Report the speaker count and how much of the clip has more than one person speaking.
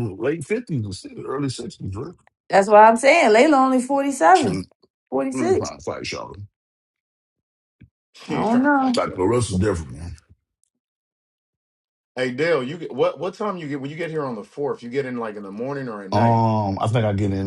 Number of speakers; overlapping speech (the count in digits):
3, about 10%